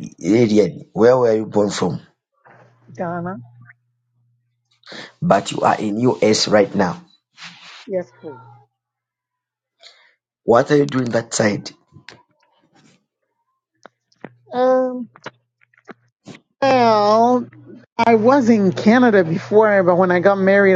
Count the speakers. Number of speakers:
2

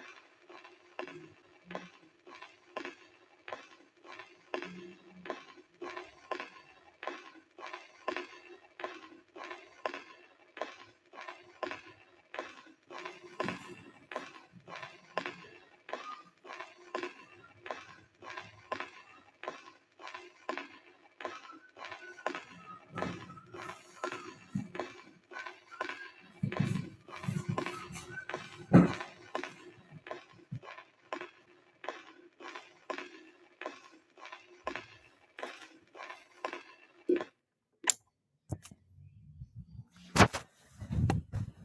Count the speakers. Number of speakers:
0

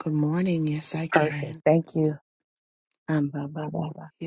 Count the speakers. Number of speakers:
2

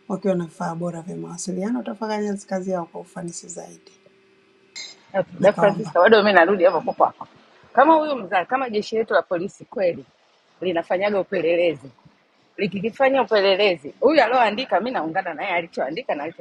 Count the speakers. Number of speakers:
2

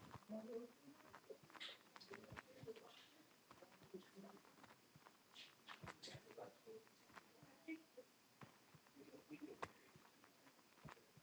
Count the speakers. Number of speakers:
0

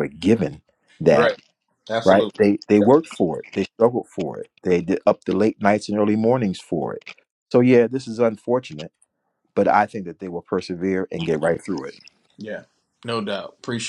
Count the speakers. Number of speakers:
2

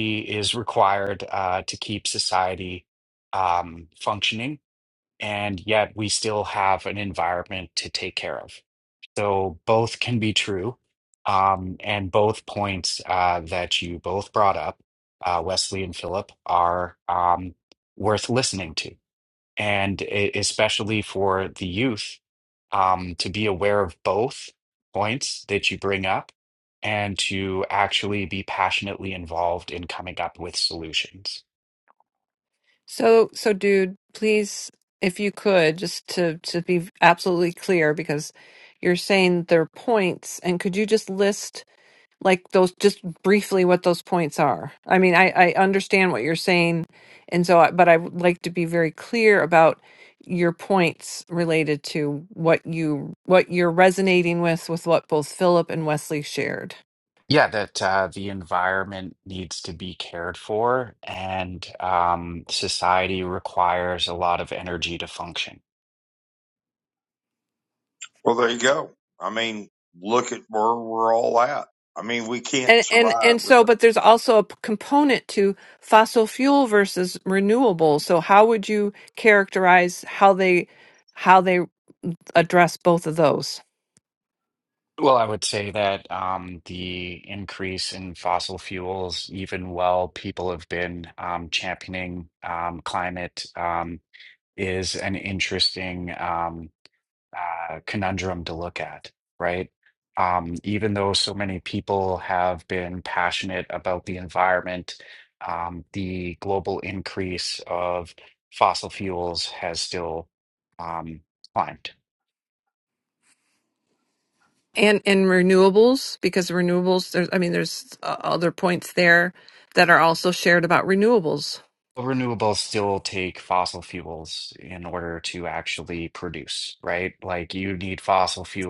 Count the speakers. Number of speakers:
3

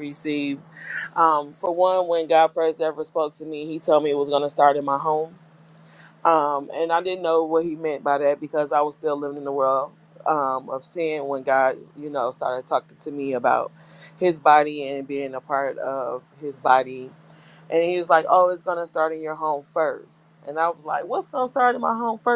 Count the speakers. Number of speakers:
1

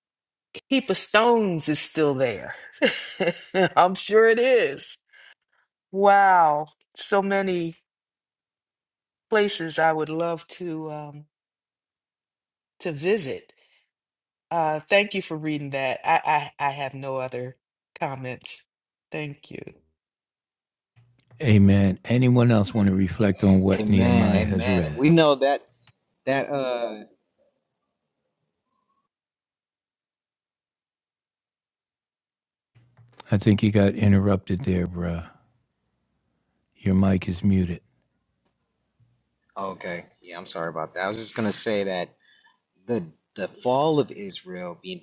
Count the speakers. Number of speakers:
3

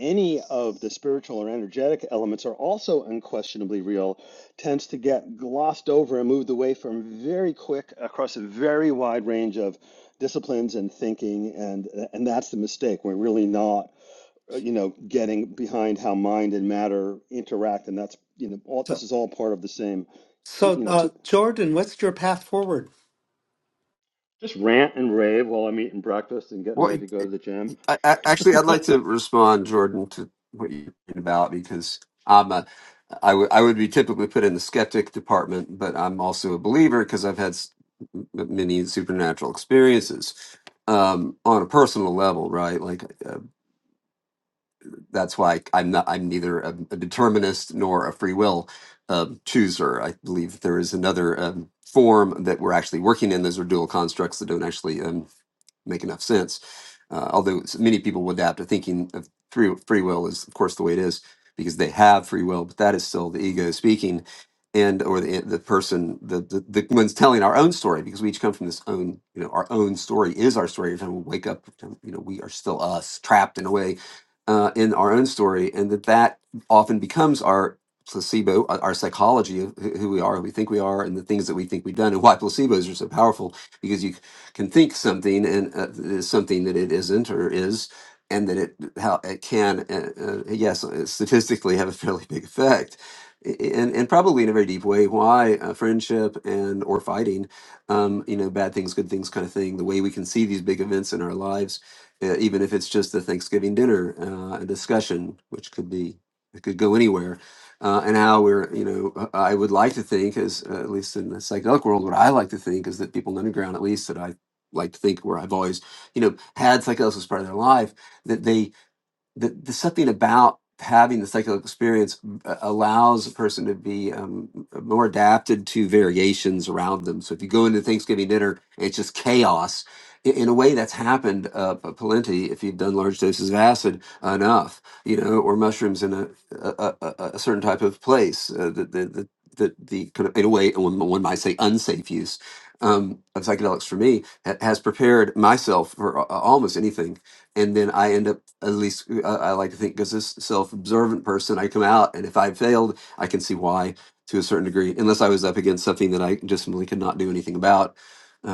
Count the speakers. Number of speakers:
3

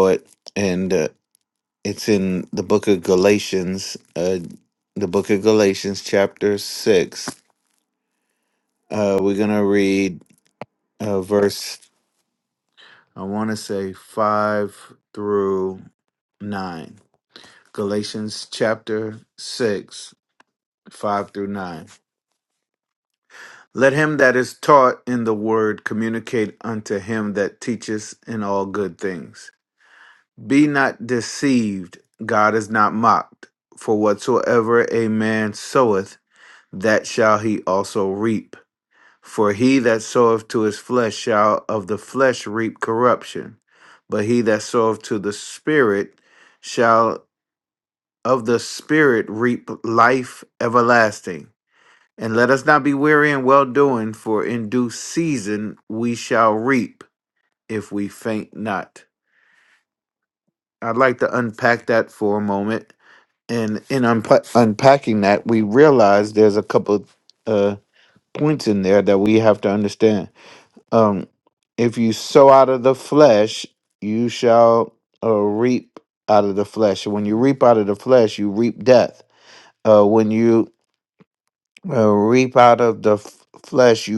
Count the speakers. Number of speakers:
1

